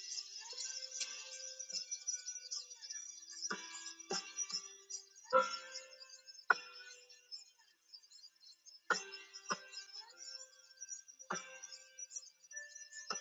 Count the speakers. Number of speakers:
zero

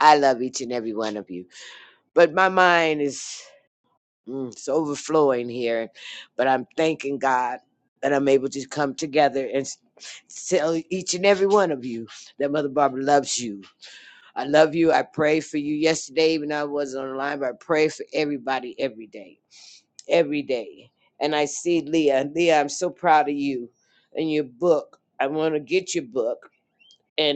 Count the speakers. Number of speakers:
one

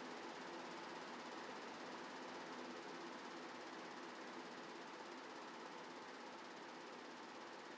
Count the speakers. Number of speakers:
zero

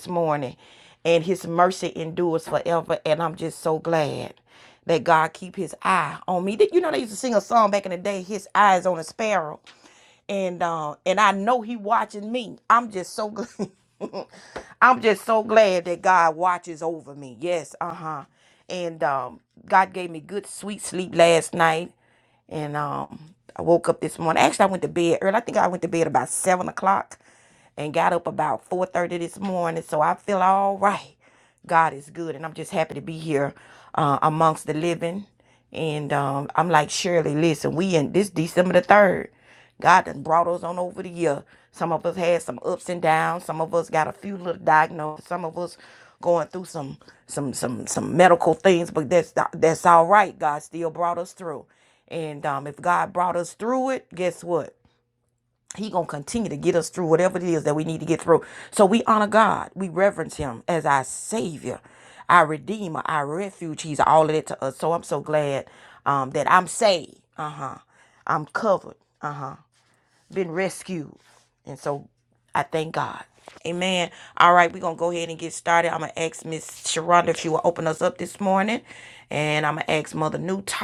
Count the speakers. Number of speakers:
one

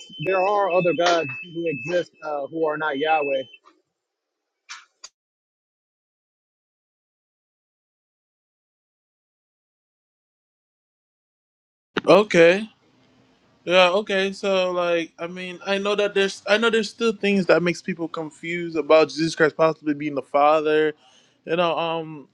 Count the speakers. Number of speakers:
two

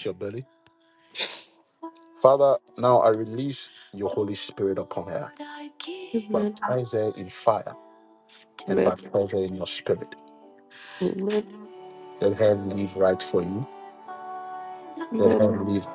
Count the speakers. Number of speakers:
two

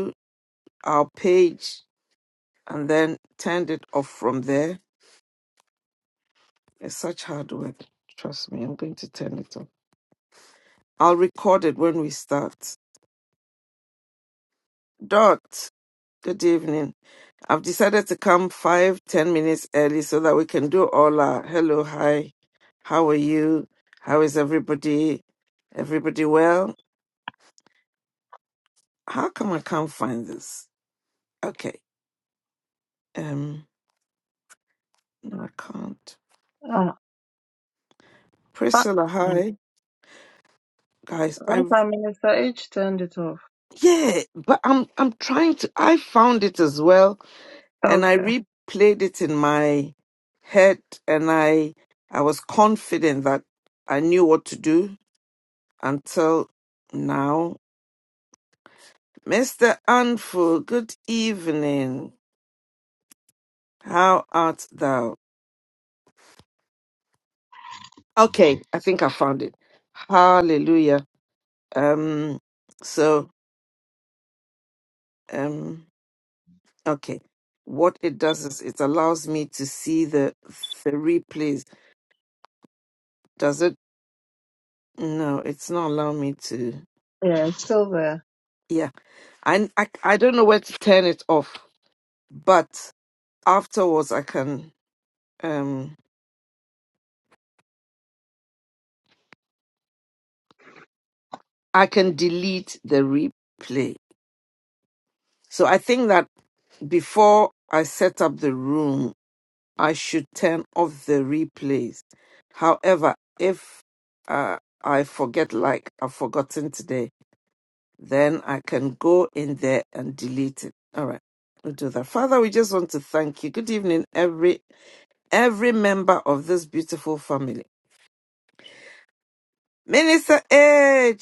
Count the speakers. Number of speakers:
two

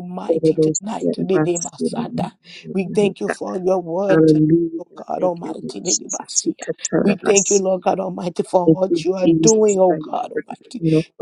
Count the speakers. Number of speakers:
two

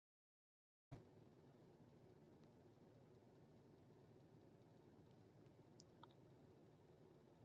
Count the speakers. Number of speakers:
zero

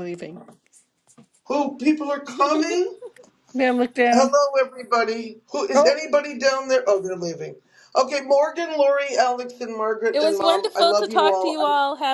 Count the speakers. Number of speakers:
three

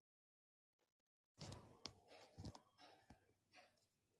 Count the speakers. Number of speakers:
zero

